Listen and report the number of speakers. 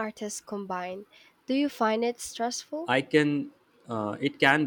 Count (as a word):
two